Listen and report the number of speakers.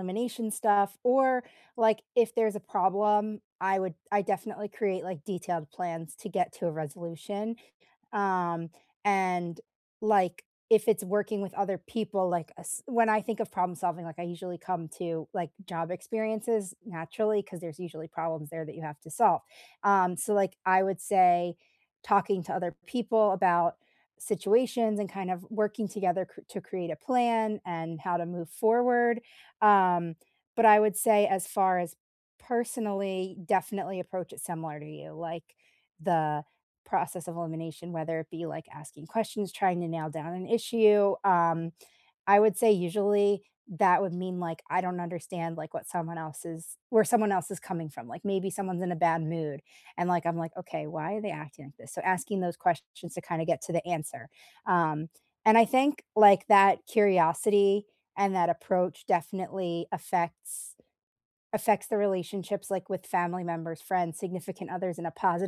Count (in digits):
1